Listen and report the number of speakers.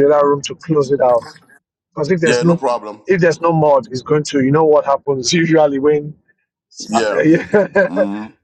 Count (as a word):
two